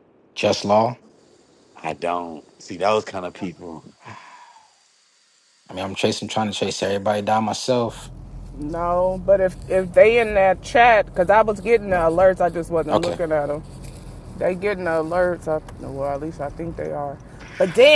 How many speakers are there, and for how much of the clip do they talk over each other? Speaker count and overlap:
3, about 2%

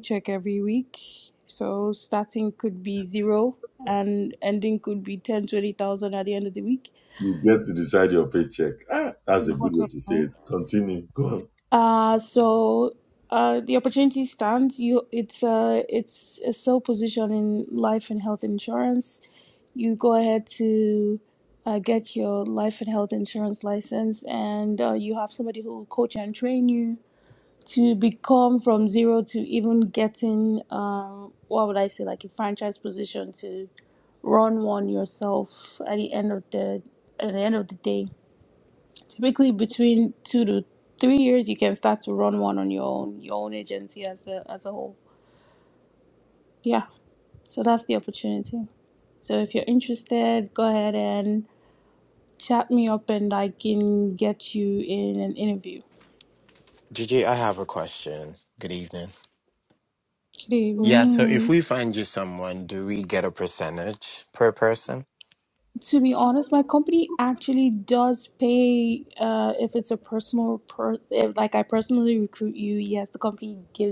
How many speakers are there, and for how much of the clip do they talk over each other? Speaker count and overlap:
3, about 2%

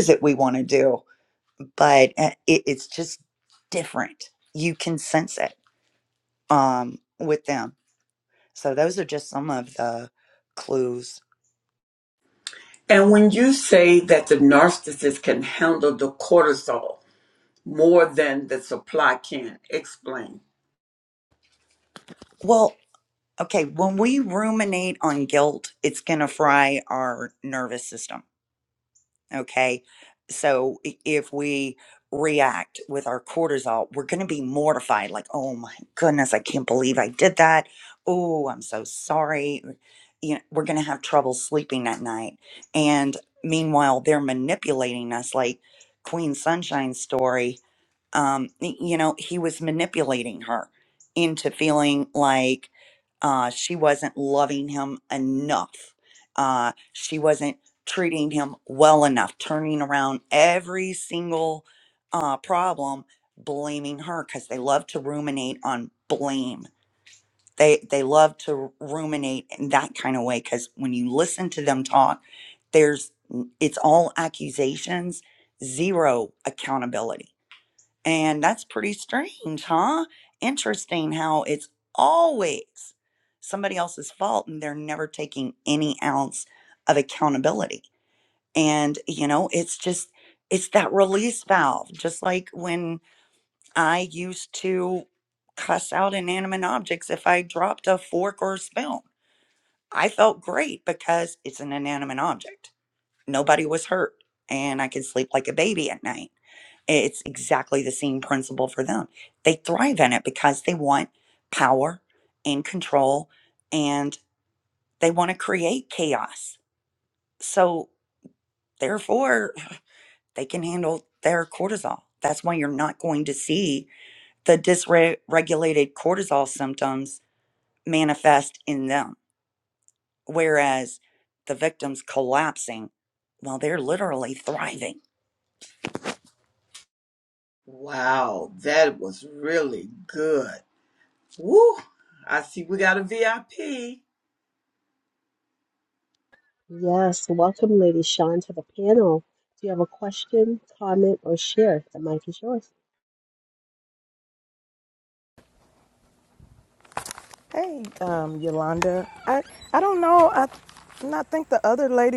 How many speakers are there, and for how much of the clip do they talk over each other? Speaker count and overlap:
4, no overlap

